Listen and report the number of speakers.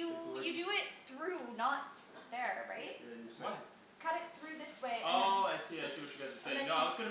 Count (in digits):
3